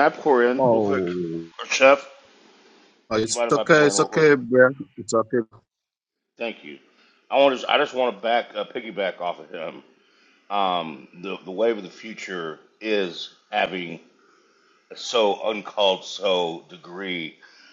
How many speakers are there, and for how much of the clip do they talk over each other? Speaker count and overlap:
two, about 8%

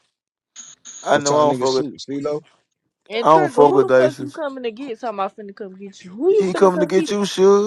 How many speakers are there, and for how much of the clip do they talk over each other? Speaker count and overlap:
three, about 34%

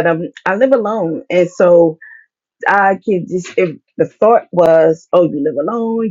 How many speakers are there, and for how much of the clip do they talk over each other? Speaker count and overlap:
one, no overlap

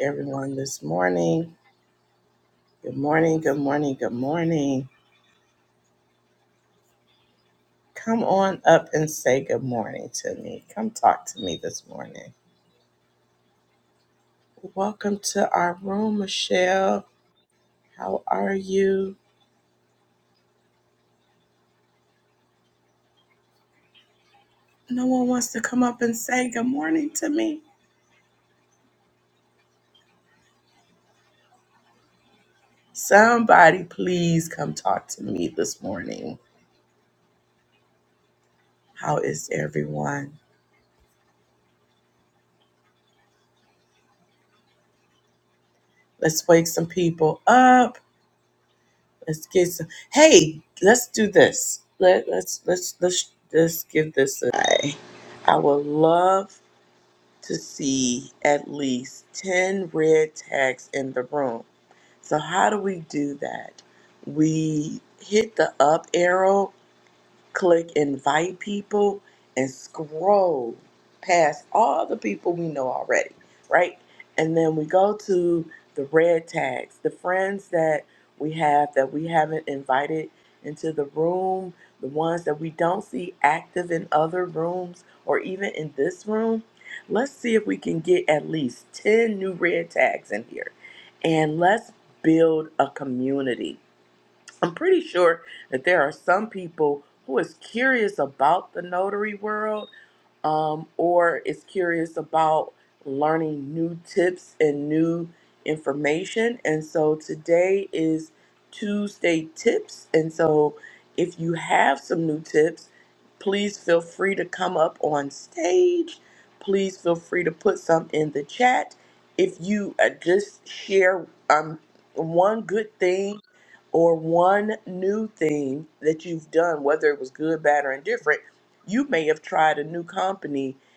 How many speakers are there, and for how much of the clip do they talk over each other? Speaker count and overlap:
one, no overlap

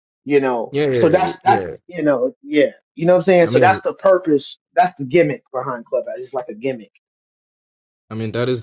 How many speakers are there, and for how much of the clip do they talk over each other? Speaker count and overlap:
two, about 13%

